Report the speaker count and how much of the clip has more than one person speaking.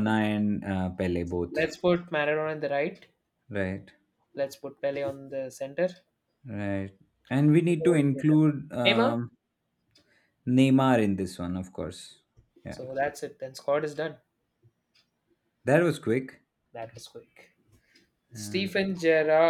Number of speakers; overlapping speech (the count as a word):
two, about 8%